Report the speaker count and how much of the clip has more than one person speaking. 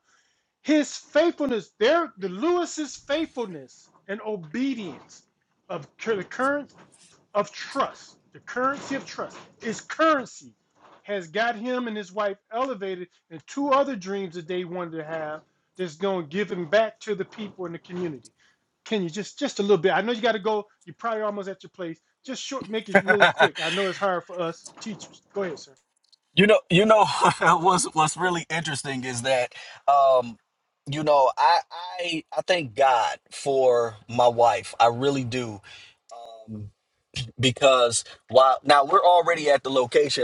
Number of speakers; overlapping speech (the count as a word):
two, about 1%